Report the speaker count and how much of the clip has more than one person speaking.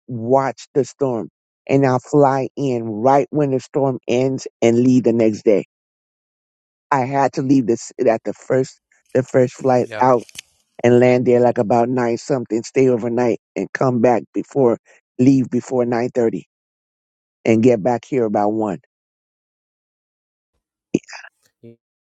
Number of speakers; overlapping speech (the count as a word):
one, no overlap